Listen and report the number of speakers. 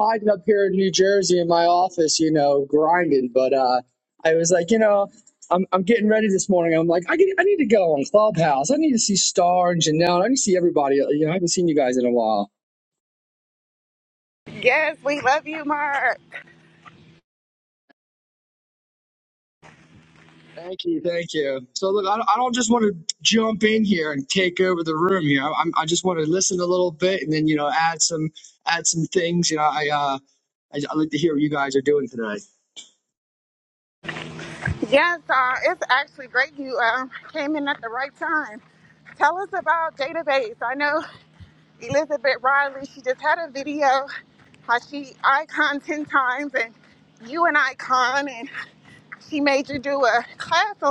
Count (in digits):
2